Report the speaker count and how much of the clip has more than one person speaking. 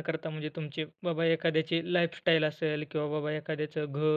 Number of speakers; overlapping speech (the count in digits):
1, no overlap